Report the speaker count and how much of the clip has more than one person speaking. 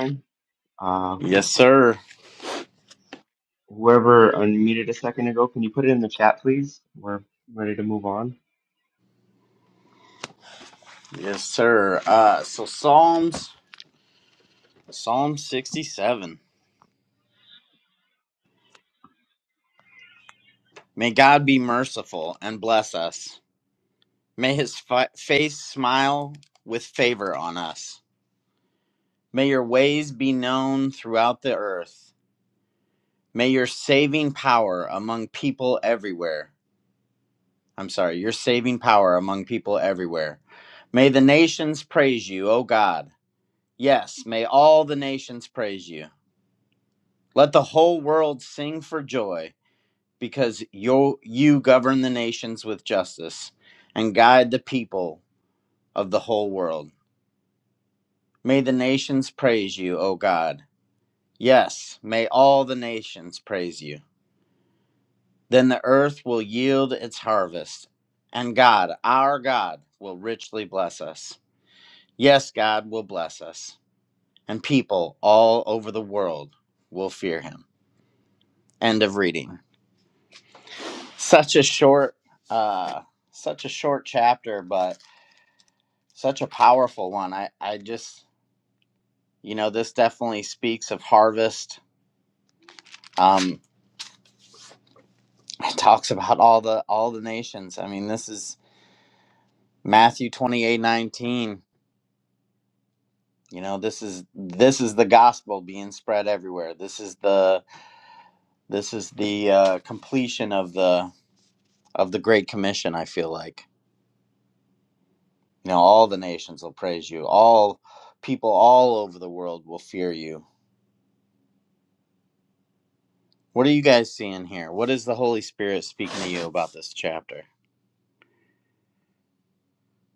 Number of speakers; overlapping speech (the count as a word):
two, under 1%